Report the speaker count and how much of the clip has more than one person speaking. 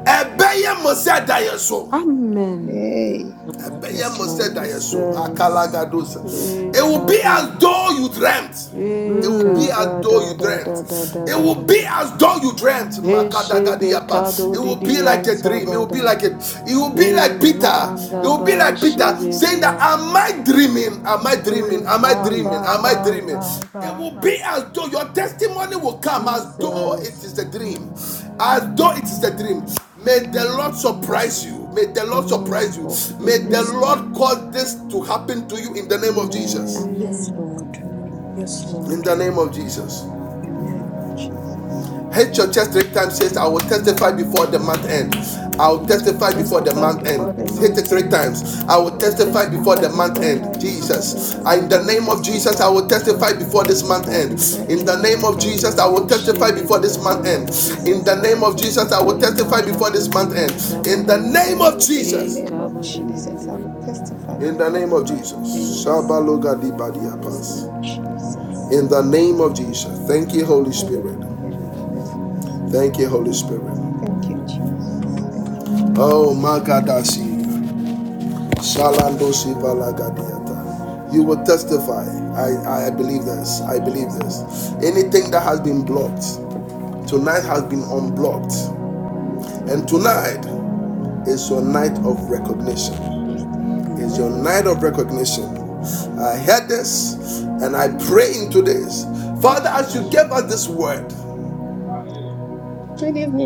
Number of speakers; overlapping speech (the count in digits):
4, about 41%